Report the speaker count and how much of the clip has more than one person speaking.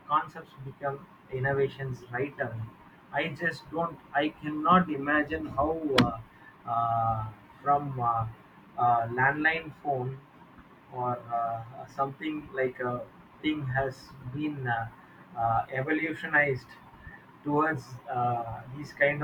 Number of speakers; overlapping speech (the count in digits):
1, no overlap